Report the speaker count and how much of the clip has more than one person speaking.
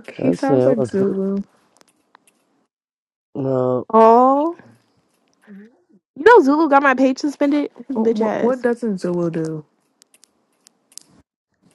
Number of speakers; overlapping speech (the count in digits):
3, about 13%